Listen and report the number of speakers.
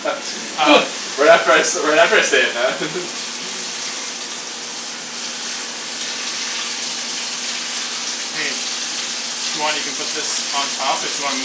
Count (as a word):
two